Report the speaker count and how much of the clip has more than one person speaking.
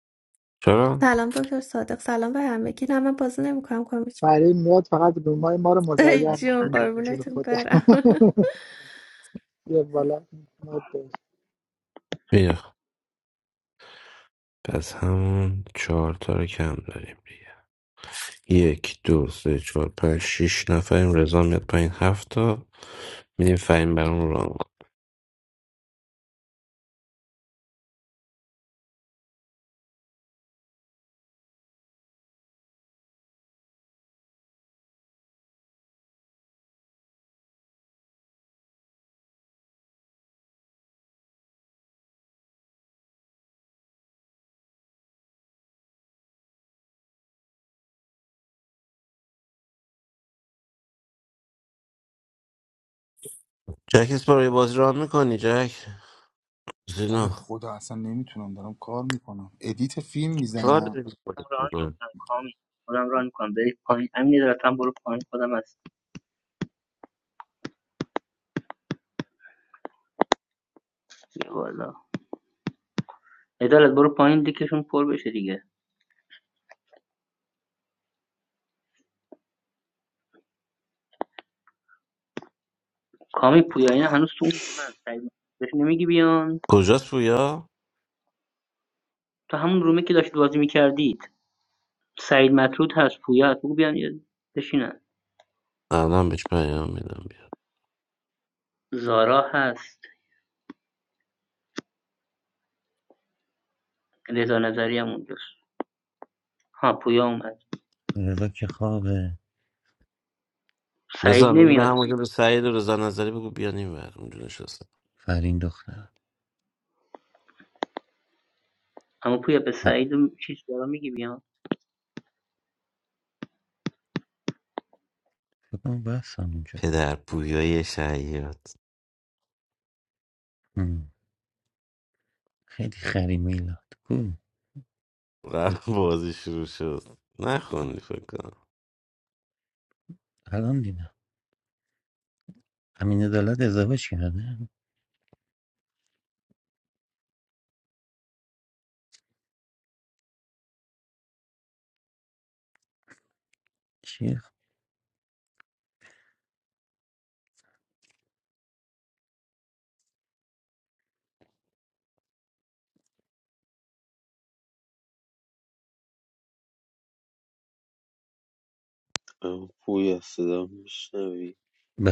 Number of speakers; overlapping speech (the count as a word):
seven, about 2%